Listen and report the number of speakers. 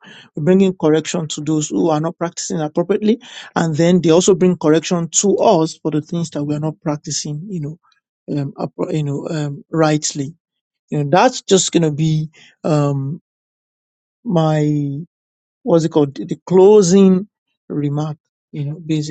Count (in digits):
1